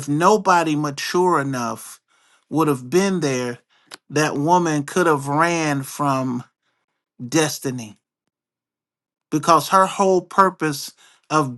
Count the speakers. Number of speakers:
1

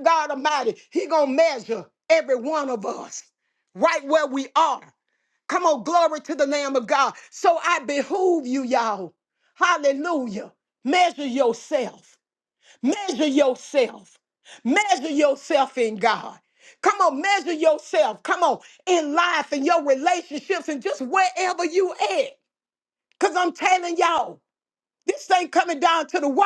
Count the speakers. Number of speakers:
1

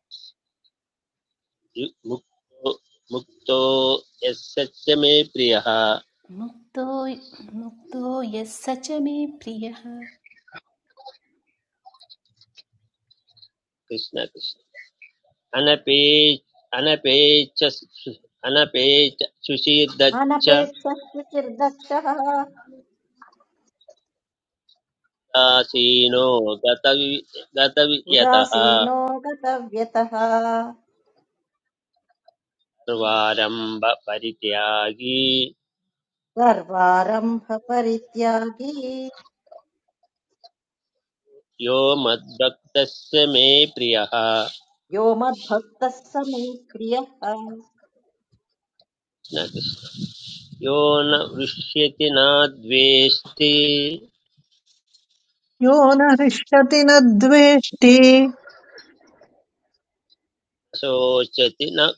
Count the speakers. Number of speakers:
4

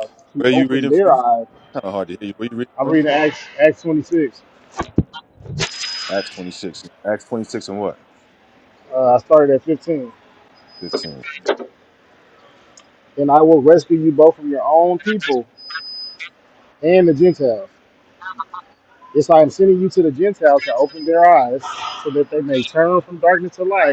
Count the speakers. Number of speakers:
2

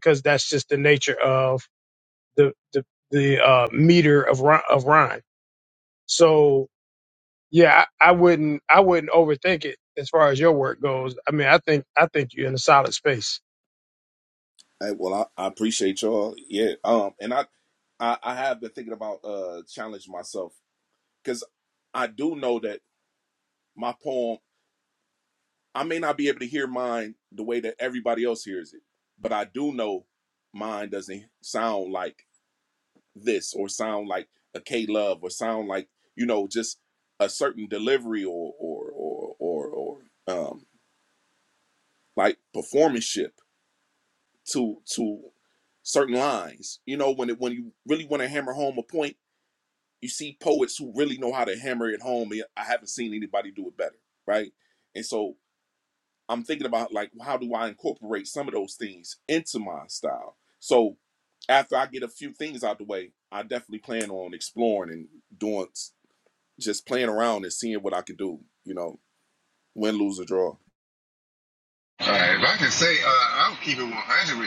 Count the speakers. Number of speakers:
3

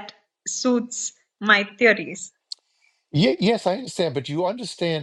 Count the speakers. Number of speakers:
2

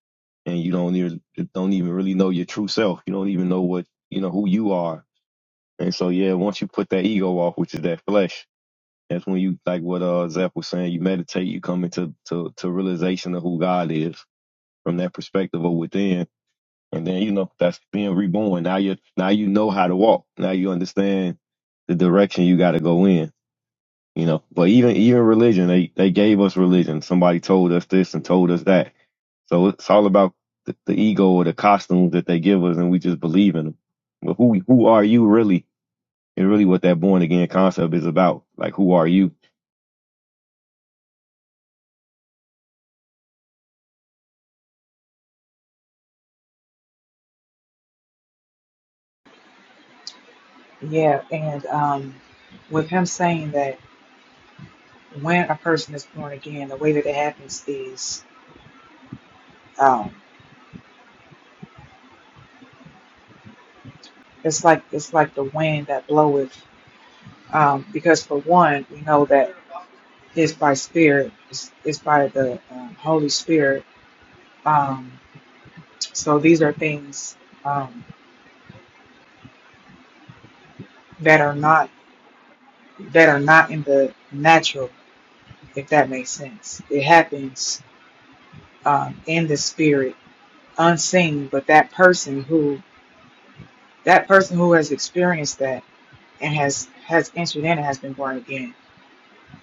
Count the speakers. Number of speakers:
2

